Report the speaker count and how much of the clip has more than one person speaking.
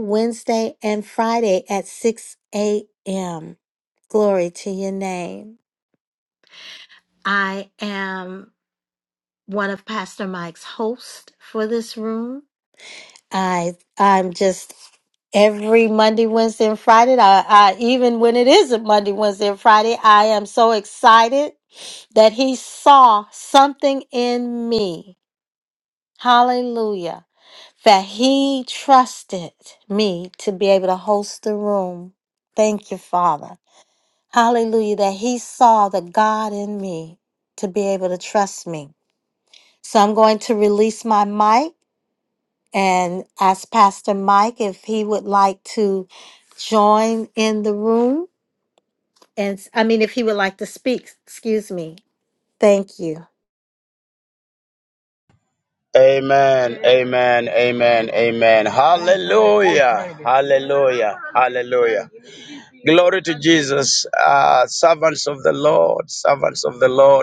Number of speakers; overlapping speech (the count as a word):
two, no overlap